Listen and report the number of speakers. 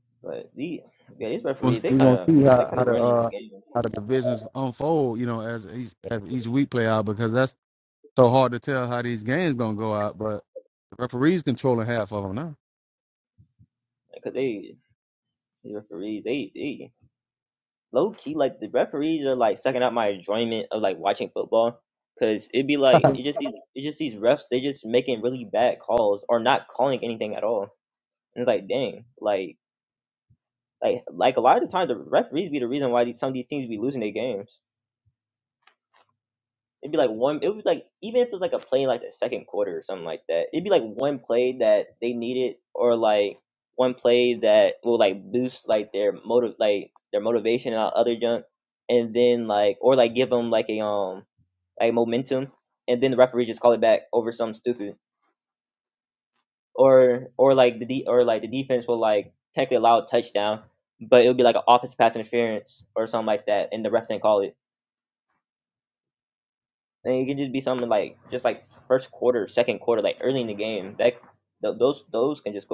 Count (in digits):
2